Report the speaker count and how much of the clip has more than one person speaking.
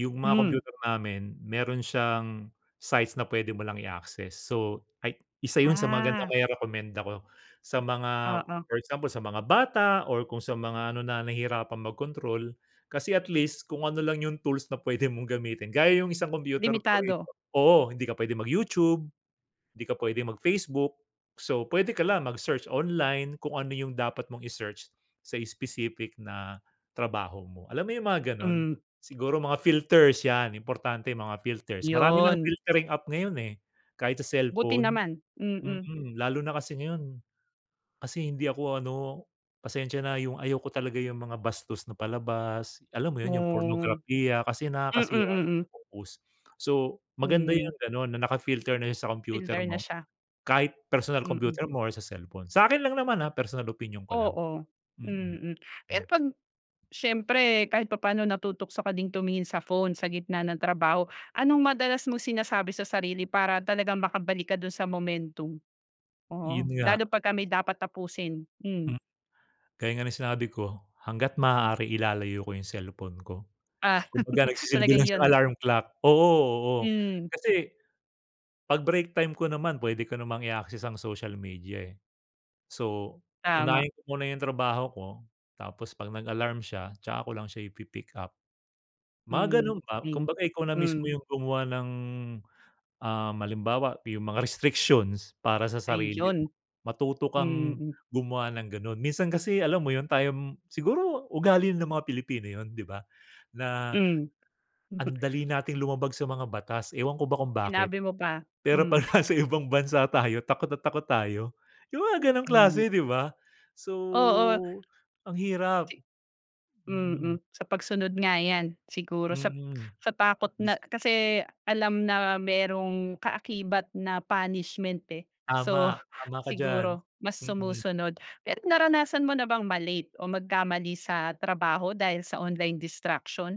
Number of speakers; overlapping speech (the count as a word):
two, about 9%